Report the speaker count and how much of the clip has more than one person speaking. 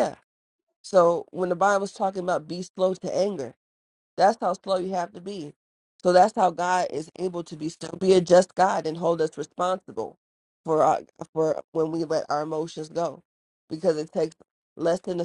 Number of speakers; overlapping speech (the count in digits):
1, no overlap